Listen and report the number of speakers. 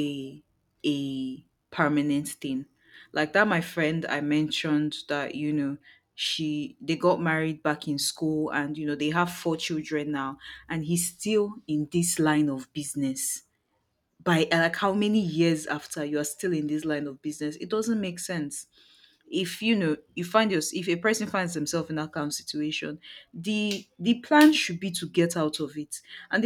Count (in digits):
1